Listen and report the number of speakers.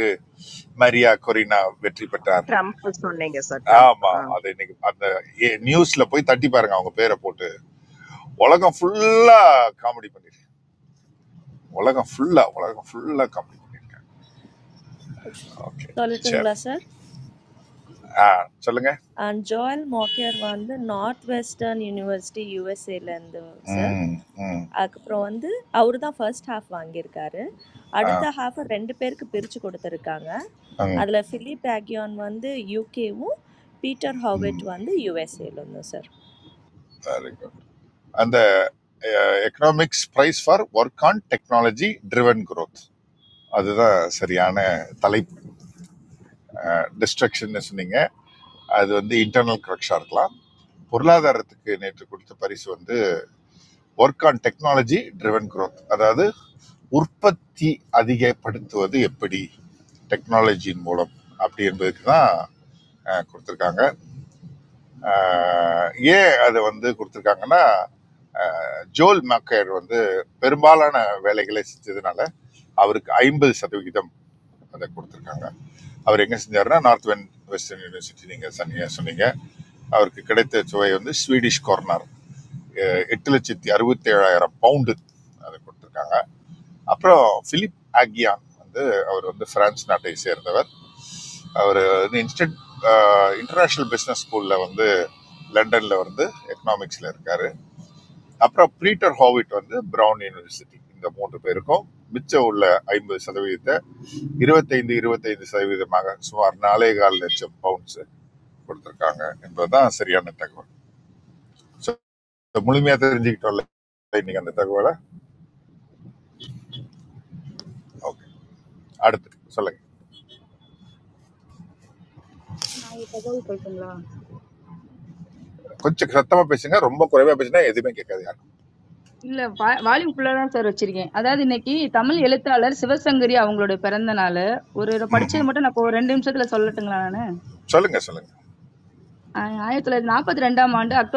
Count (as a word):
four